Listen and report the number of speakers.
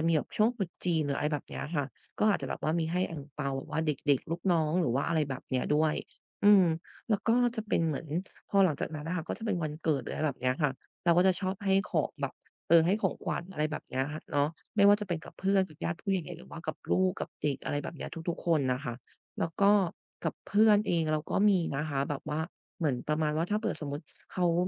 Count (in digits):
1